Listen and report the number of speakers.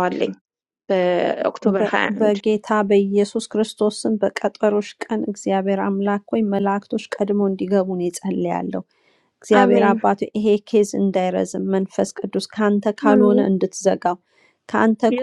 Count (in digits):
2